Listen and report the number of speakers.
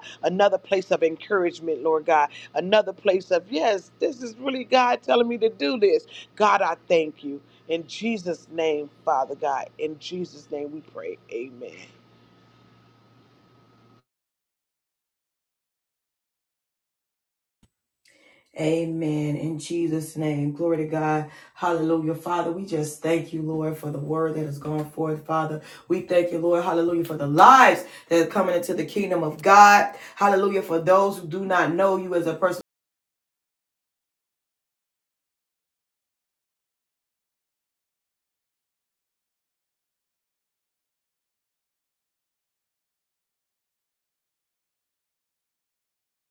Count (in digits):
2